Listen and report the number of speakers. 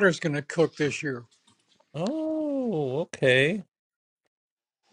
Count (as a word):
two